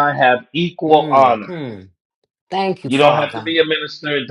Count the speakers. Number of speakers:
2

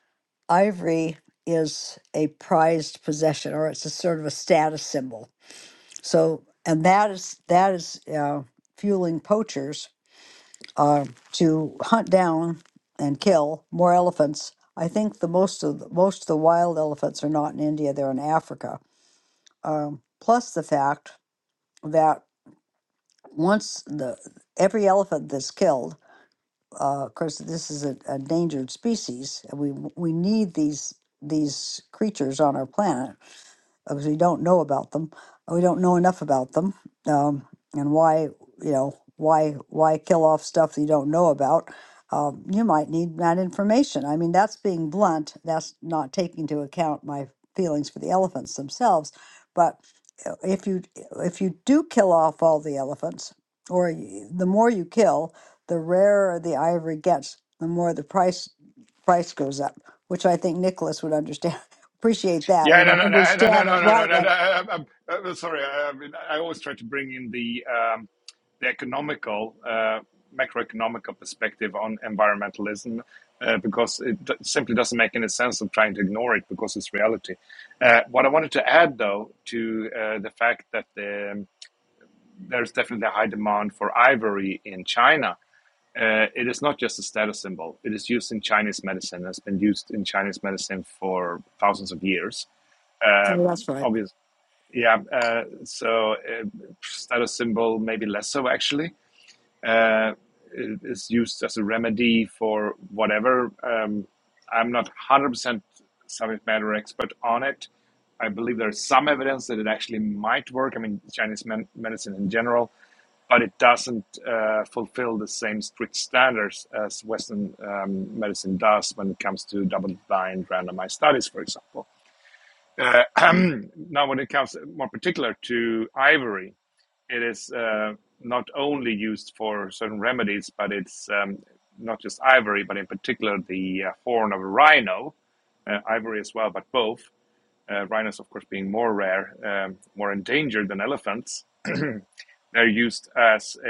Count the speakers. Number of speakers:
2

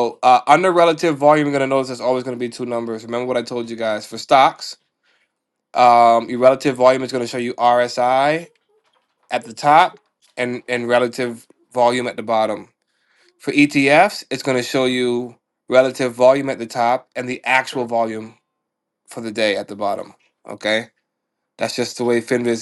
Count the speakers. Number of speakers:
1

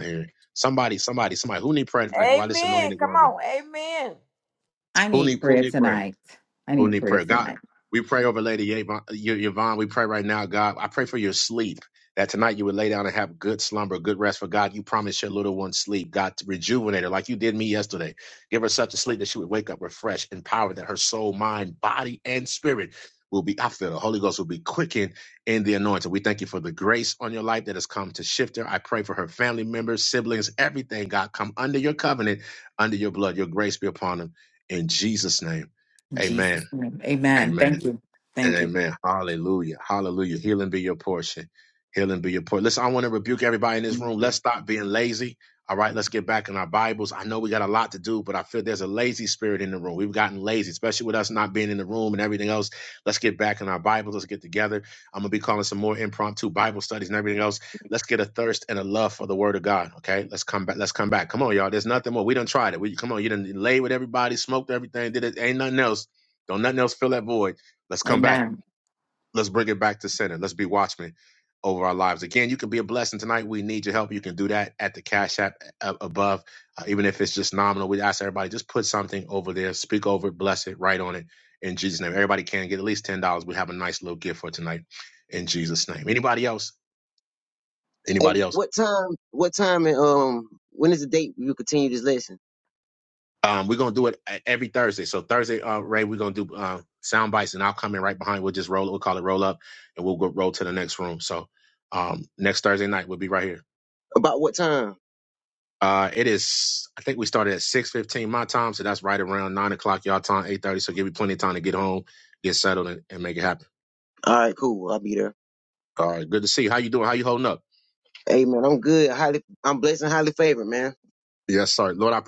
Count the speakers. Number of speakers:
4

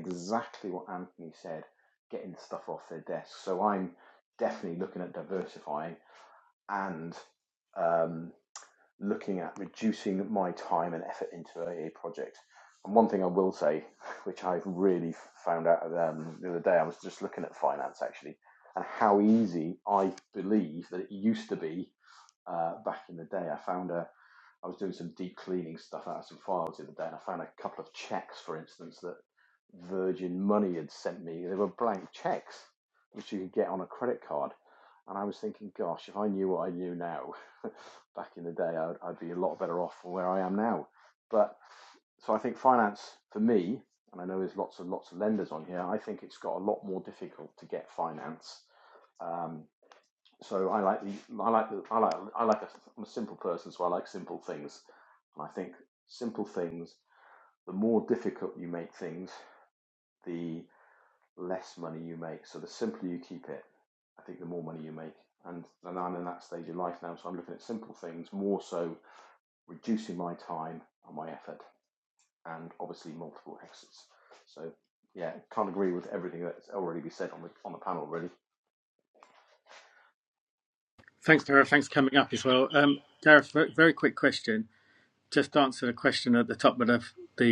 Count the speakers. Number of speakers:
2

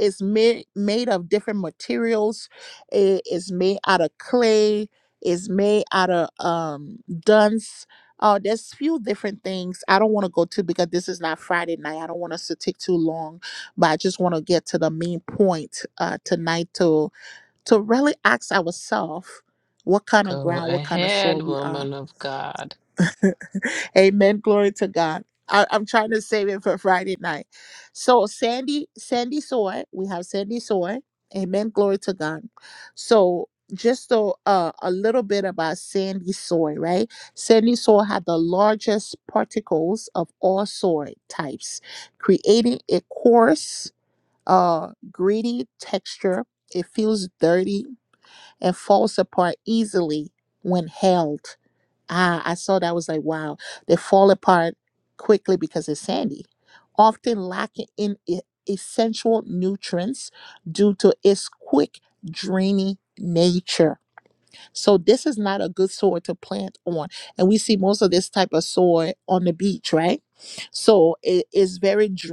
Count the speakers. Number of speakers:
2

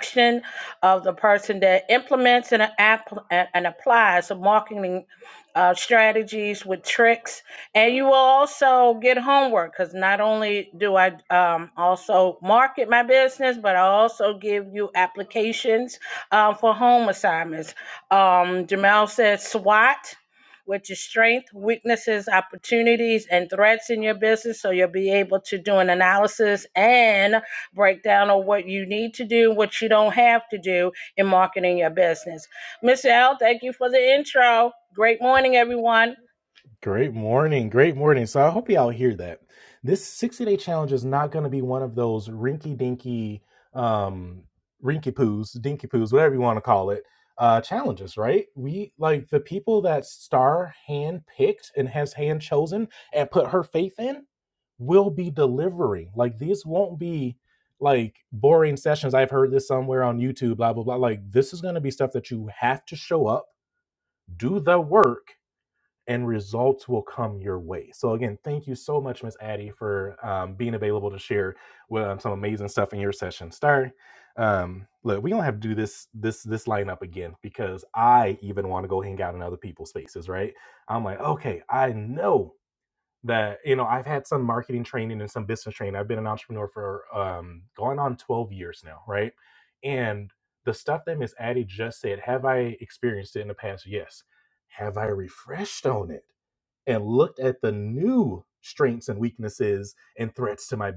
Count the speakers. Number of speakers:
2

